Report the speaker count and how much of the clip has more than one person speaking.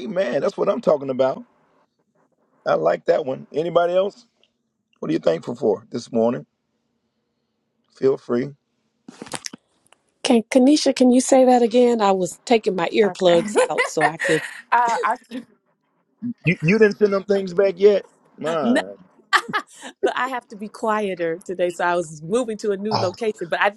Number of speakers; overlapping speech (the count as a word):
three, about 5%